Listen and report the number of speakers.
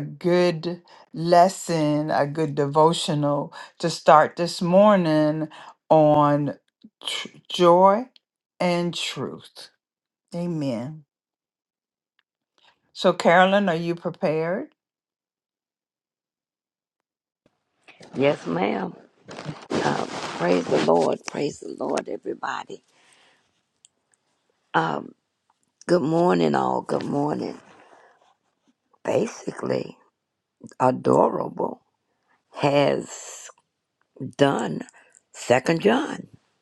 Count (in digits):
2